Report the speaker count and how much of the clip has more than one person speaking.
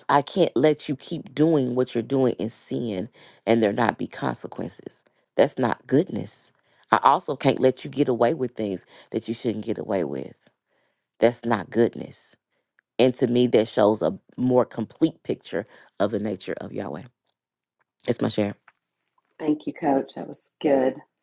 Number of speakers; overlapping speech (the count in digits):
2, no overlap